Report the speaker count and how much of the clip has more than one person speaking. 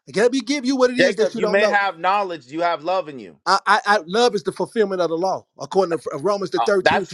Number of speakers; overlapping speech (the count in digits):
2, about 20%